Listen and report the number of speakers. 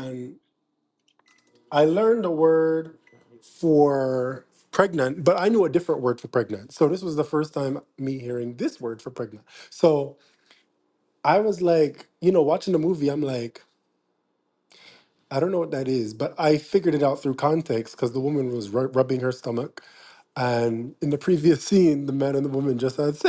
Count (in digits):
1